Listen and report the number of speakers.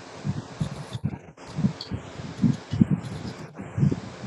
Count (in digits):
0